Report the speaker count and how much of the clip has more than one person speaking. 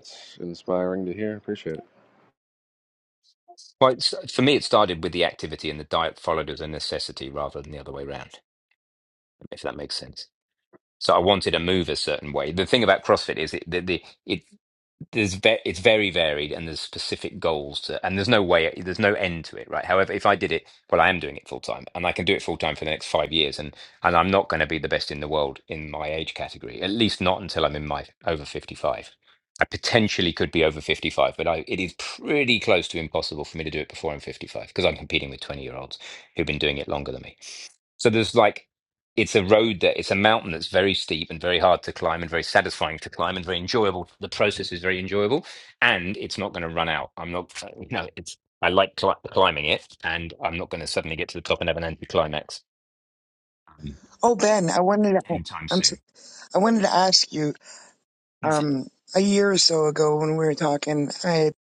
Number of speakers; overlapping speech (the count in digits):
3, about 1%